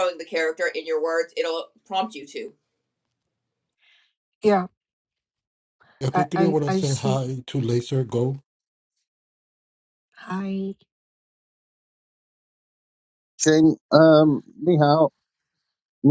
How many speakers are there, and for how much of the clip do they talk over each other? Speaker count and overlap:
4, about 7%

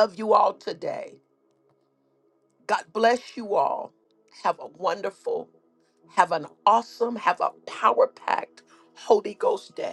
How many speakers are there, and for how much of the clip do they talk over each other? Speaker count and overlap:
1, no overlap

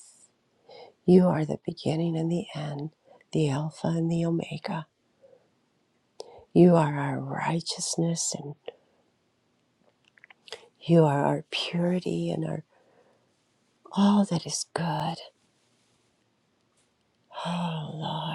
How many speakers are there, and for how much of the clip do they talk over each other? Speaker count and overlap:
1, no overlap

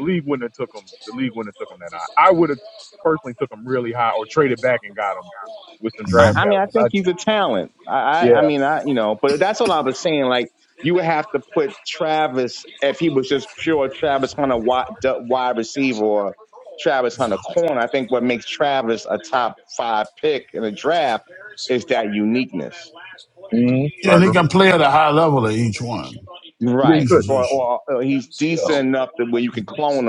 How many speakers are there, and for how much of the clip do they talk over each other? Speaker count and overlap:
3, about 9%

